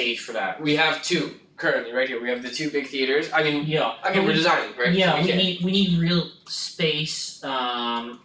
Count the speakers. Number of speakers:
two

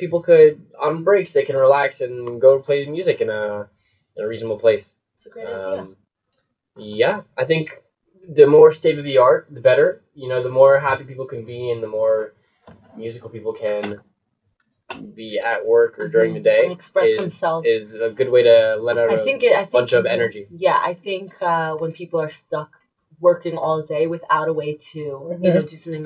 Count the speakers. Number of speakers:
two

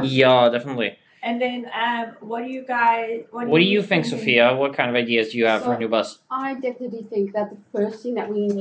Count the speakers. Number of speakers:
three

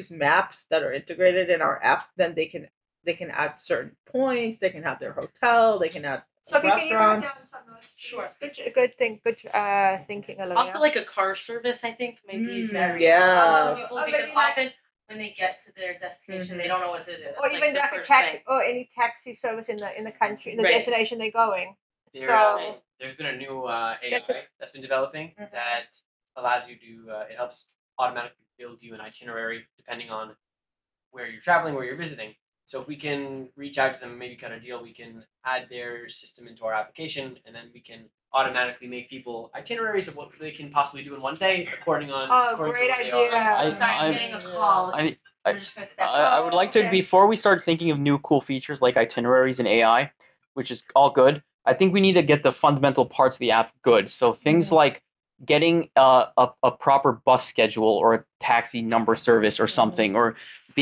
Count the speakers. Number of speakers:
five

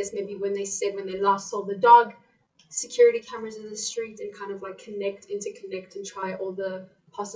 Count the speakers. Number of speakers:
one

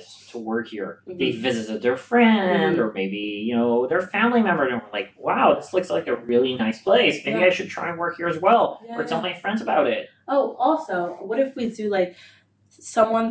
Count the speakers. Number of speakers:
two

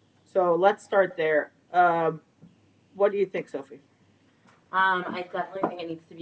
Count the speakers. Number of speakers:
two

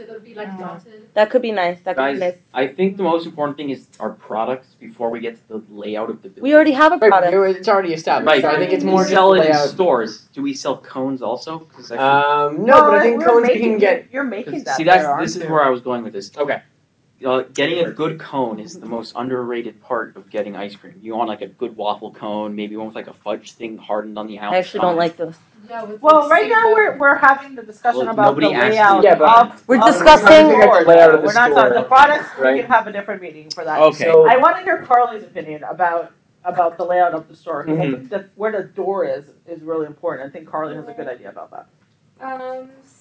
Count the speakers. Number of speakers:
six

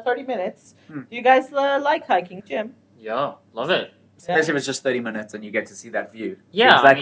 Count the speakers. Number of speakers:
three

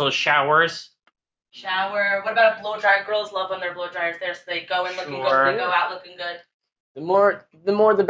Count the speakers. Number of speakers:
three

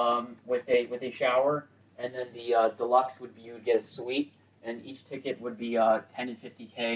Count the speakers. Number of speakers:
one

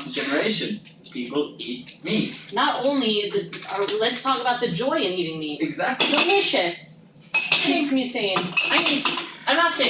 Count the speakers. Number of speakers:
three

